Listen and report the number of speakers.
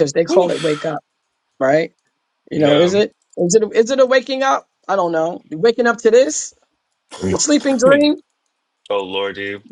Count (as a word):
two